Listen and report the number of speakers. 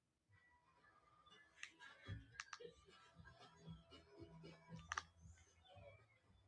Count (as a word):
zero